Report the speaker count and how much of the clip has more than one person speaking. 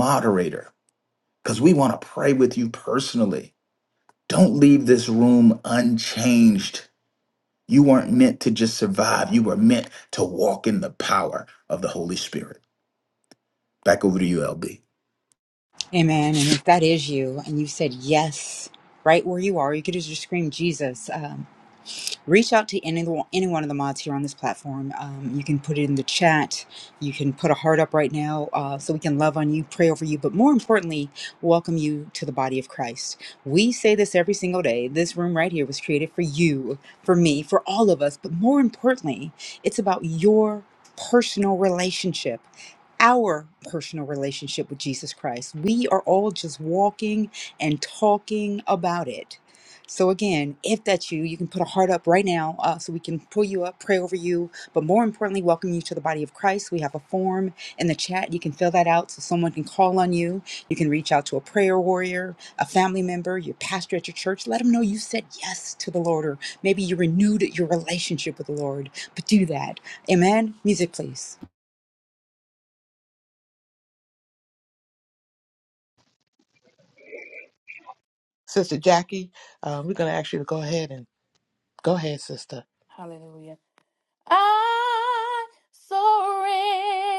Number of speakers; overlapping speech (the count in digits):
4, no overlap